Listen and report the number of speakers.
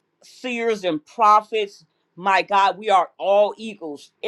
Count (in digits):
1